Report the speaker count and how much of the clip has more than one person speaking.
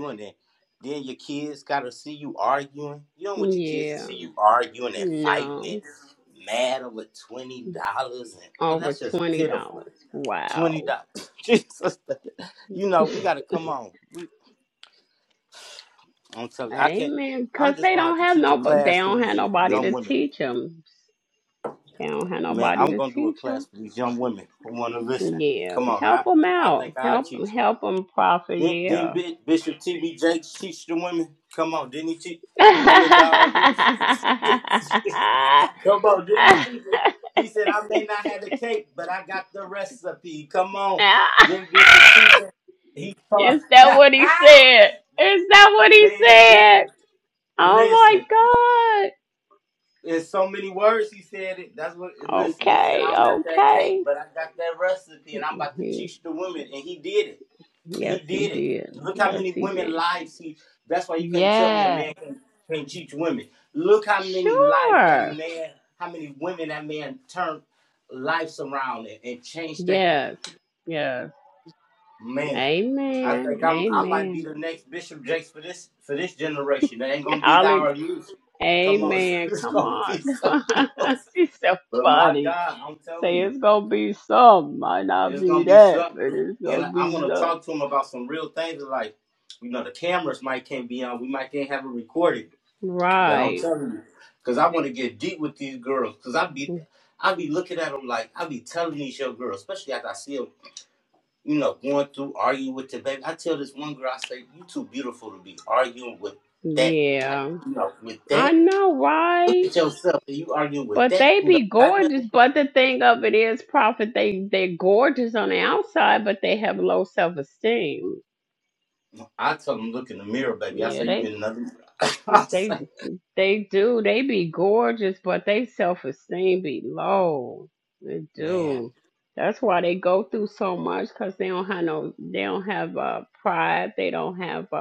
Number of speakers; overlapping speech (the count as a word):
two, about 21%